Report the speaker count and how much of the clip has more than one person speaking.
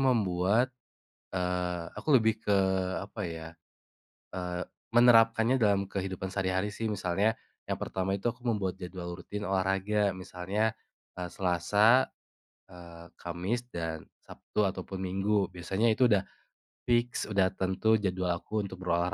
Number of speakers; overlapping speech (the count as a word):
one, no overlap